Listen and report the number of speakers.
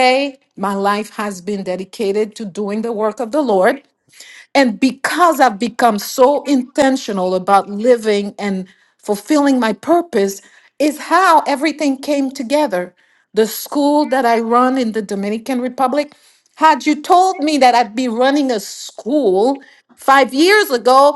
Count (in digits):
1